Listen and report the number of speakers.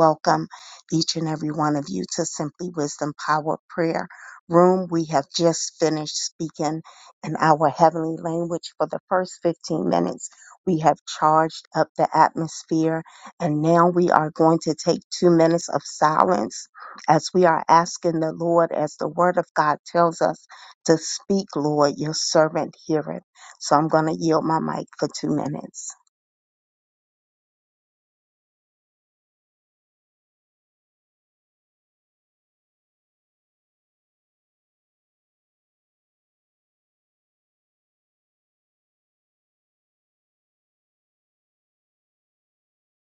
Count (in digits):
1